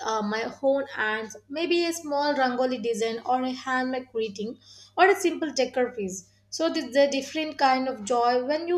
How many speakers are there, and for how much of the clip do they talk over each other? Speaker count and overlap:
one, no overlap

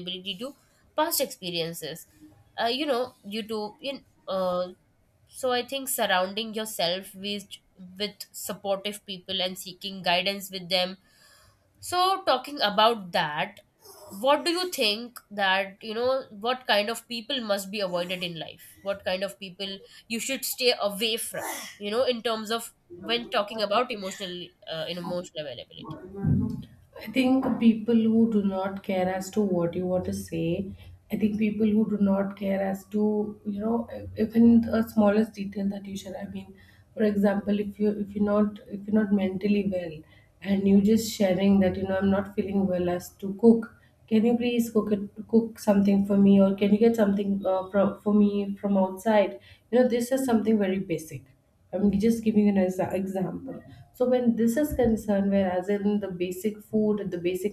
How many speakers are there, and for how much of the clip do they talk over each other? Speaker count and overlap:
two, no overlap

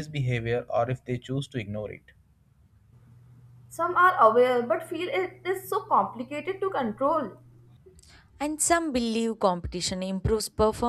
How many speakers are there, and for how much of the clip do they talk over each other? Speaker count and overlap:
three, no overlap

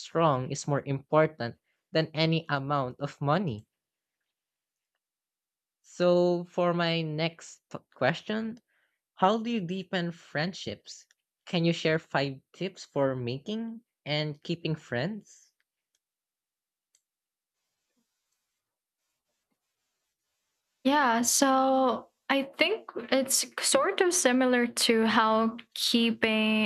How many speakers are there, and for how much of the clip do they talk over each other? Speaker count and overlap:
two, no overlap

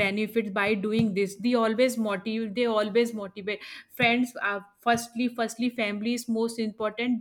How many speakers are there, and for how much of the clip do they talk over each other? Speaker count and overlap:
one, no overlap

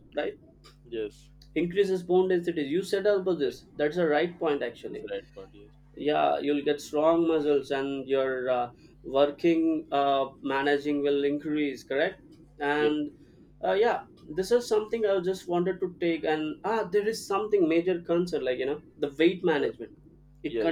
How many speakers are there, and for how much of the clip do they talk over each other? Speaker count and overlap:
two, about 3%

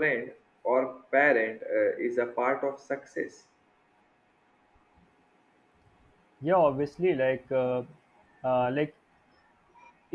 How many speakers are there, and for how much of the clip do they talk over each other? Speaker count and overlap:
two, no overlap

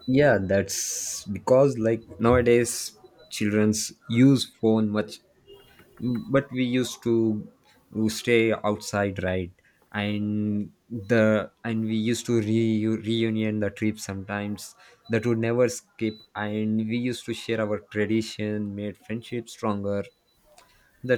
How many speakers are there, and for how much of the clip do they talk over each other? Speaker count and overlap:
one, no overlap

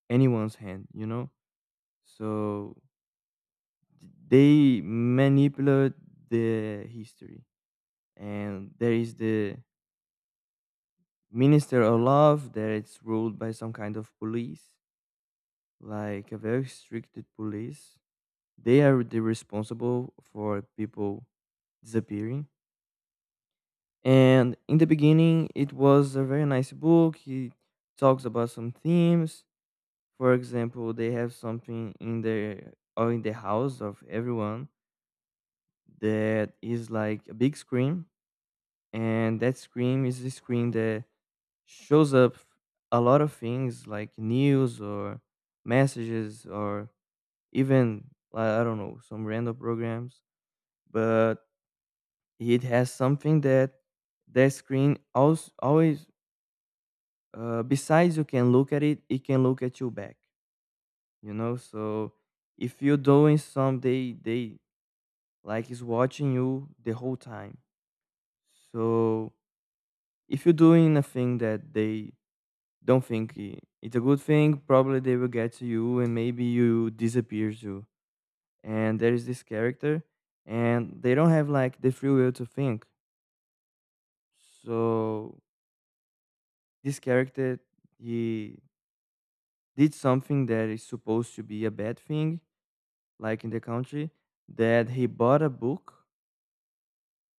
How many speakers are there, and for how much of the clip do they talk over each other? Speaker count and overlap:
one, no overlap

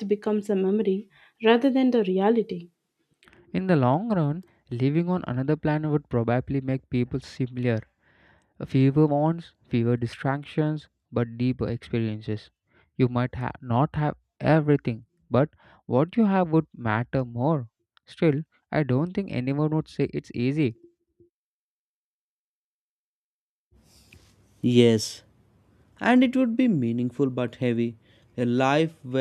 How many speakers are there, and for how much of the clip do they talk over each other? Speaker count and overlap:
three, no overlap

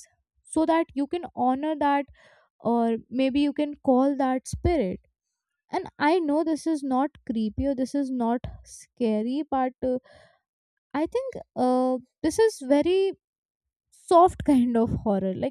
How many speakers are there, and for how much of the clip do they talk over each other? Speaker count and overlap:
one, no overlap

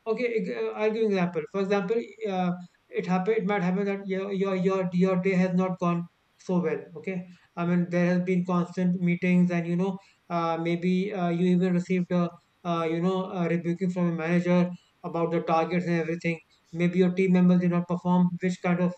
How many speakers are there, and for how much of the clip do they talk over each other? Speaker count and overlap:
one, no overlap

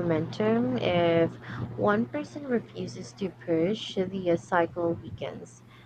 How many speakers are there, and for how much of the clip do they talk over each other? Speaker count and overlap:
one, no overlap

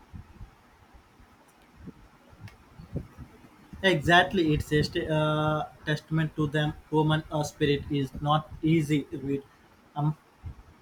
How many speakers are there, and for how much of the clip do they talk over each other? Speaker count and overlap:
one, no overlap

